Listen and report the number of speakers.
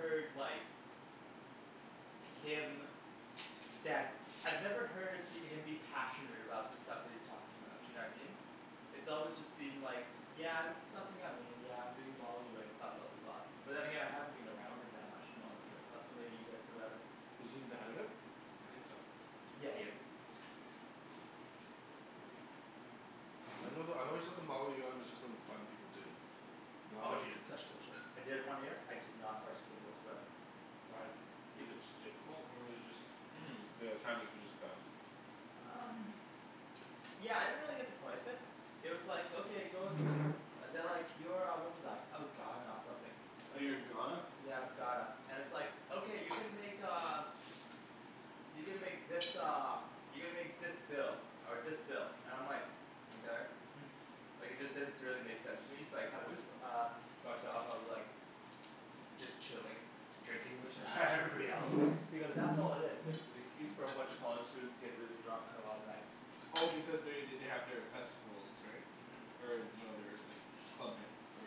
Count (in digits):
3